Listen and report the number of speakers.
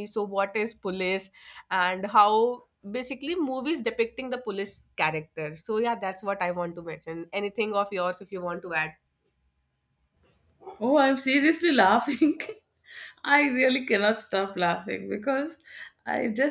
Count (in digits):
2